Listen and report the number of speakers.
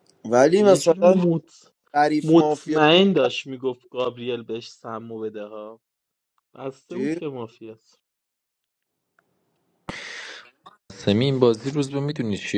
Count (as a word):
three